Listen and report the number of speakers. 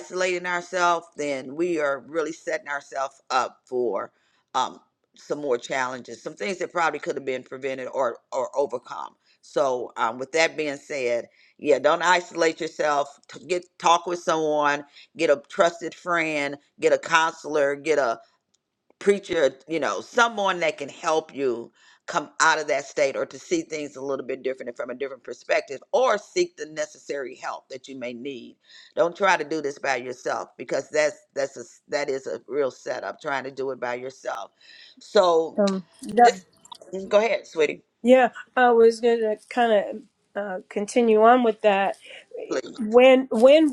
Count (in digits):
2